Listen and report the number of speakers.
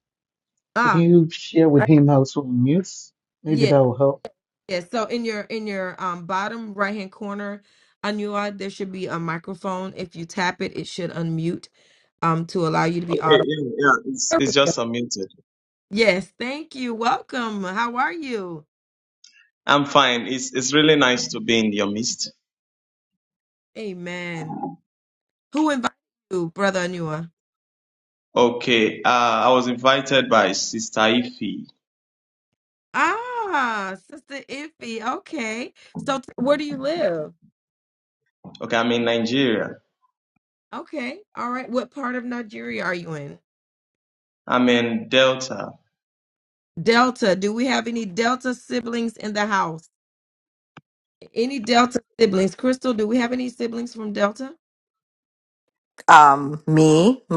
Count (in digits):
4